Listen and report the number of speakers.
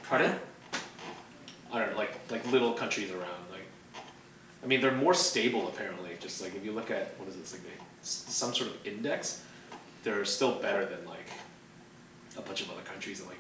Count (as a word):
one